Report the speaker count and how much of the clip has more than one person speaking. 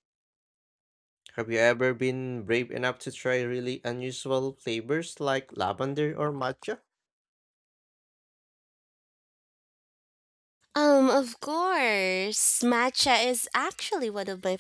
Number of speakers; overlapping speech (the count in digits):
2, no overlap